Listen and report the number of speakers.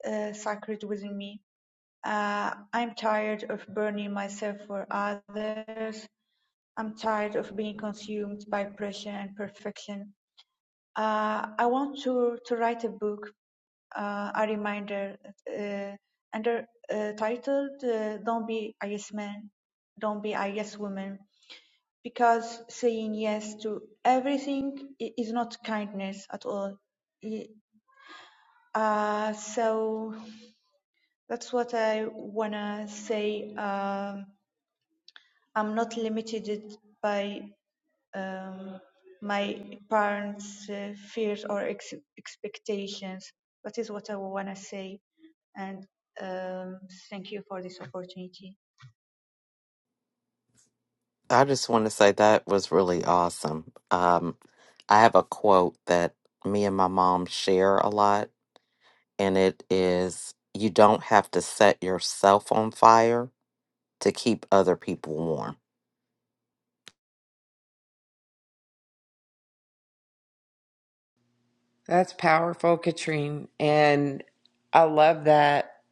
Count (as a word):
three